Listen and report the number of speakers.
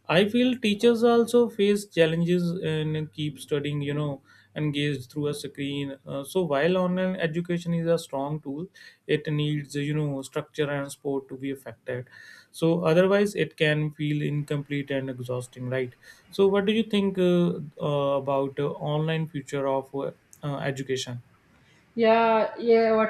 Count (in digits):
2